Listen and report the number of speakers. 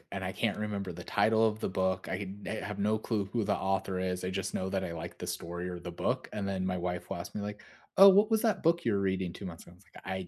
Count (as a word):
one